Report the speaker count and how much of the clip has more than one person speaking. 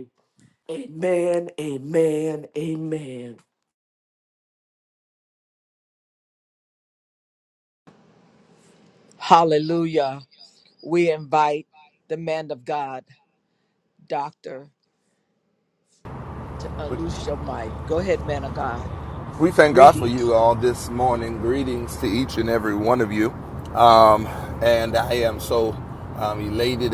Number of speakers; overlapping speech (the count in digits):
3, about 2%